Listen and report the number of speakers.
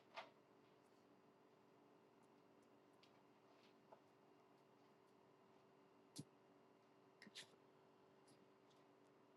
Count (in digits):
0